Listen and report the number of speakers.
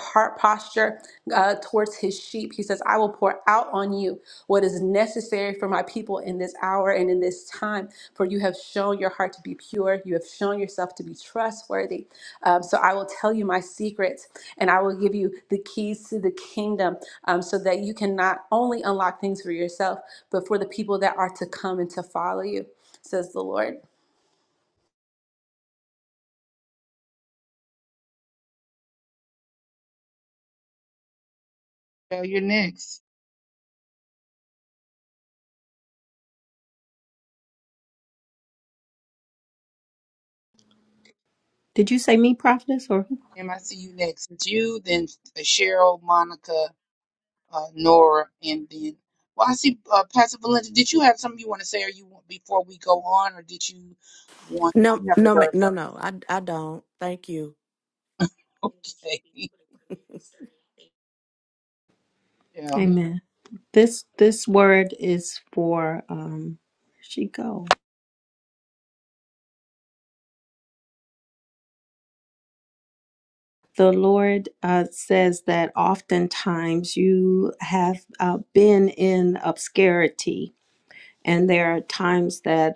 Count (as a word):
four